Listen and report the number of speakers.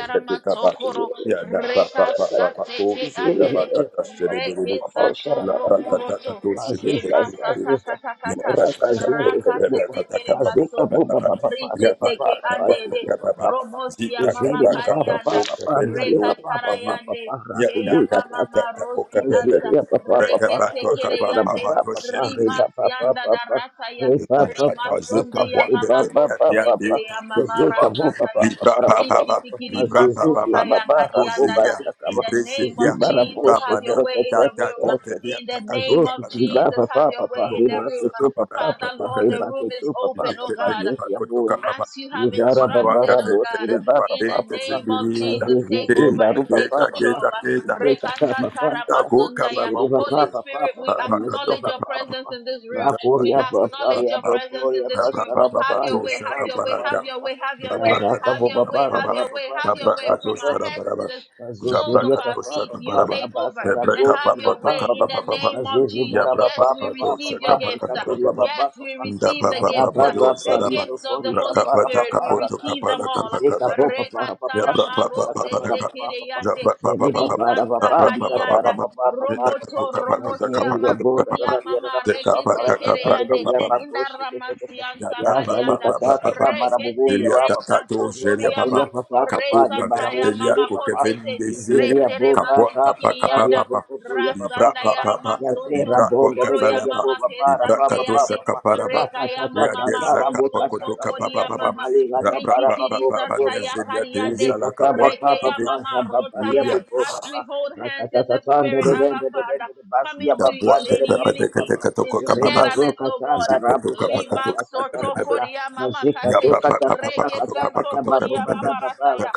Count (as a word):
three